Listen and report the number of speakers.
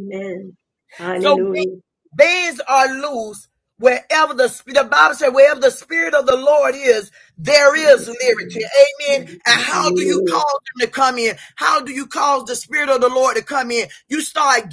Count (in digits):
2